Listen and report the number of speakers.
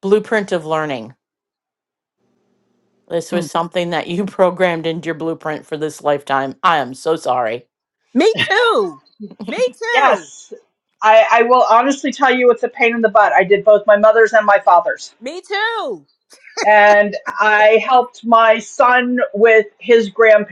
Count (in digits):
3